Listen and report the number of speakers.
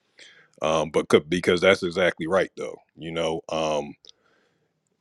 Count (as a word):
one